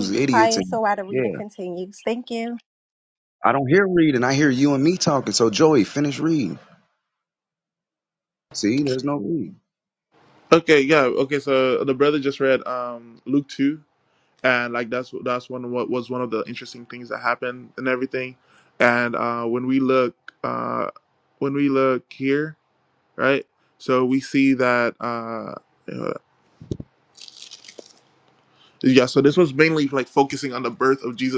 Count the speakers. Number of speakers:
3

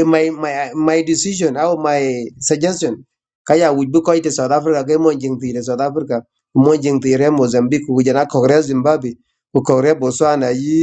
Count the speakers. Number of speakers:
1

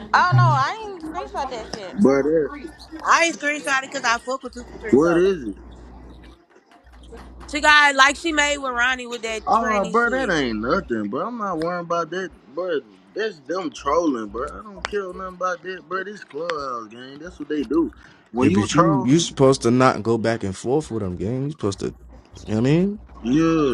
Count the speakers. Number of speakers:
4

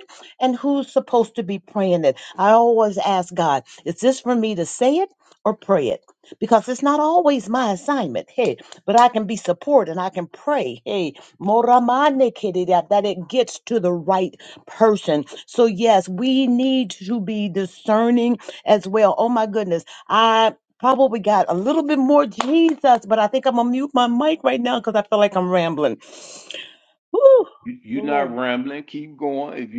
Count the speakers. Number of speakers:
2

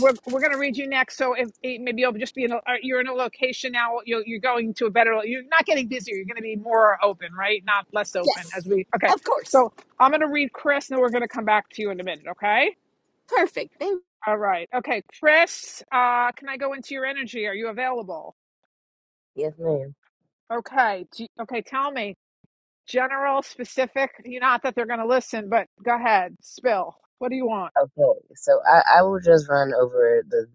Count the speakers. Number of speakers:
3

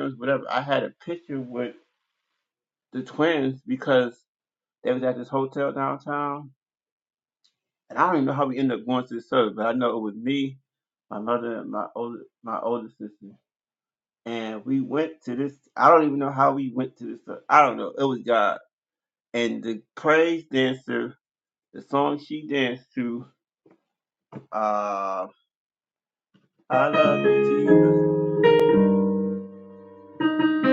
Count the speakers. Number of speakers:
1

